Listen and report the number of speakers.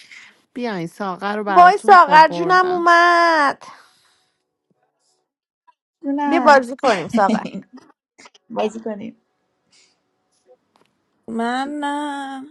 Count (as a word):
four